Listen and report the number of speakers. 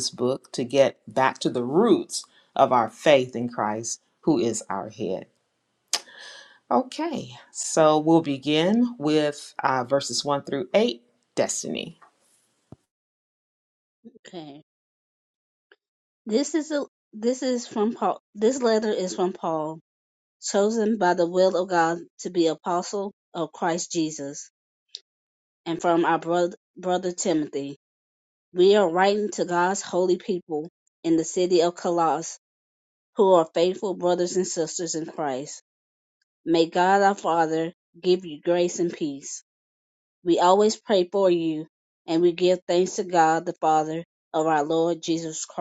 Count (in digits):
2